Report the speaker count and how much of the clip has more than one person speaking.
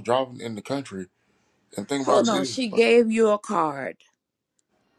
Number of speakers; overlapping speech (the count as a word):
two, about 15%